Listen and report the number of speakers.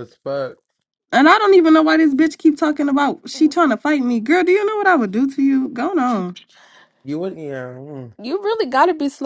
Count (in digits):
3